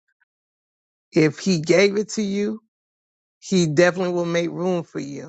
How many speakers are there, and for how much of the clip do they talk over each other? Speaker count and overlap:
1, no overlap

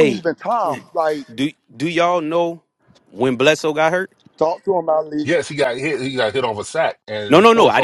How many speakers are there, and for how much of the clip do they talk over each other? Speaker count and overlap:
3, about 10%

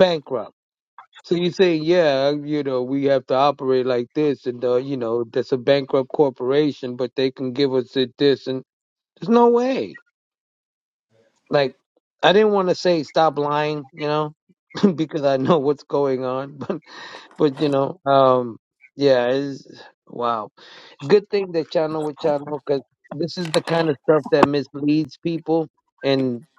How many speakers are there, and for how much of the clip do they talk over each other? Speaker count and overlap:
1, no overlap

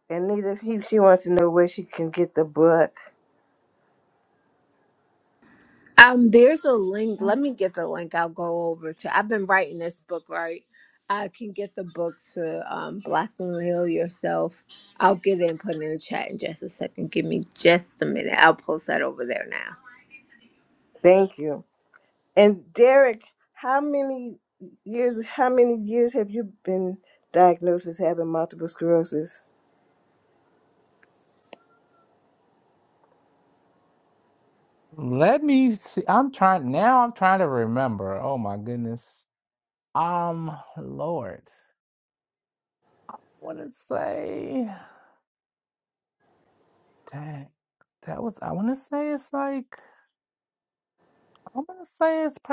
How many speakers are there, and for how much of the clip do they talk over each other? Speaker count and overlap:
3, no overlap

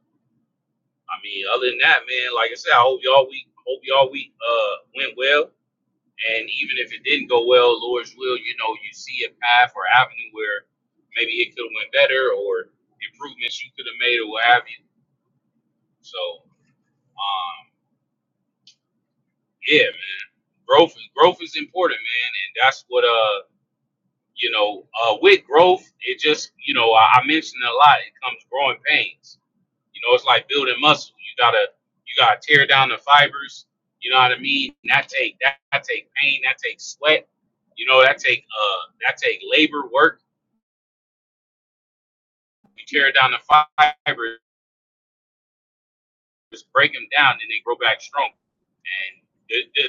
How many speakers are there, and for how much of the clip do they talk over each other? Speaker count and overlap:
1, no overlap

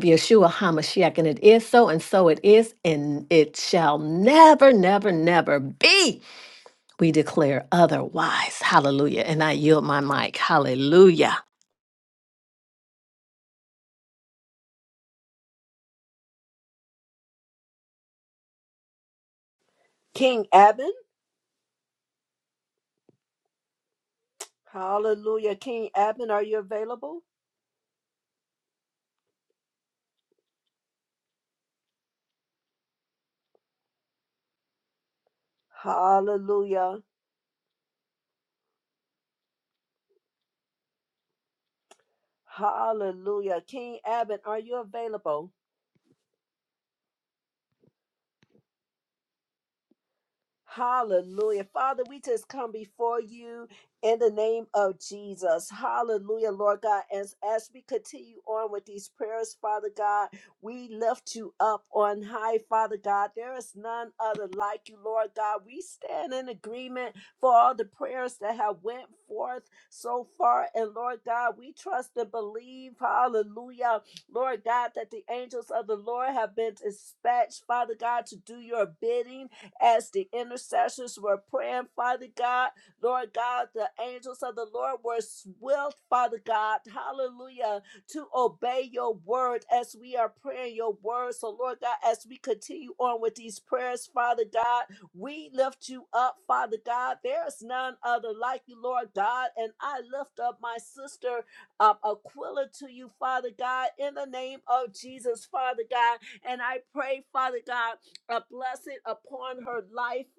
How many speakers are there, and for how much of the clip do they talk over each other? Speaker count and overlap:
2, no overlap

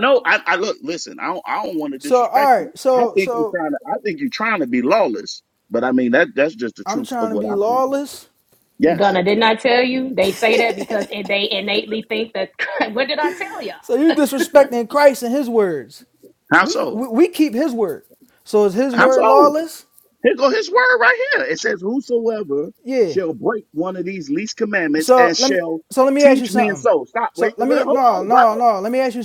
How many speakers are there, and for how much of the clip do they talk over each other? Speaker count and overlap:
3, about 20%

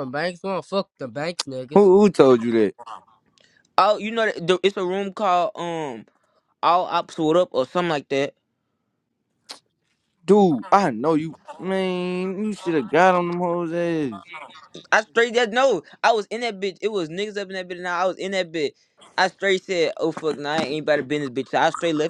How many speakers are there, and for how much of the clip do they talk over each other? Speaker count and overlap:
3, under 1%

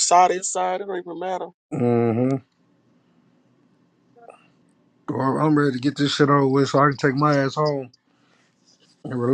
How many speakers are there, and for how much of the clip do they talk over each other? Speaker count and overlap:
2, no overlap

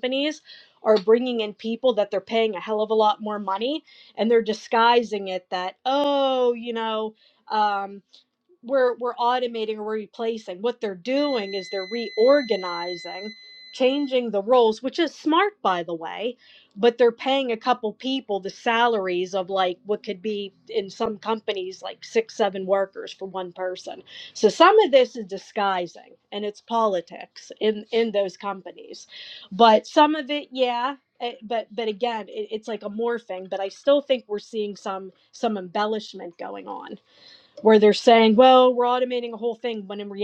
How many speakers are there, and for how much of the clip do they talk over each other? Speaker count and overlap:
1, no overlap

